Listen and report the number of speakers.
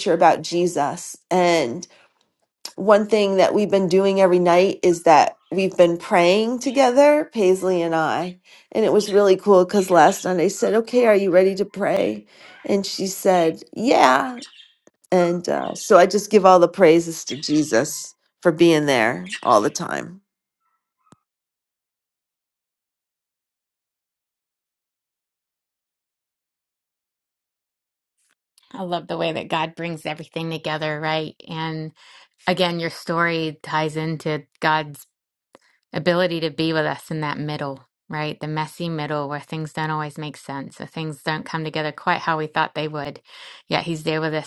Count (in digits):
2